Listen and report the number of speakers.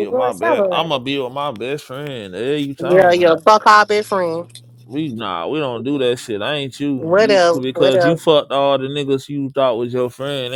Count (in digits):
2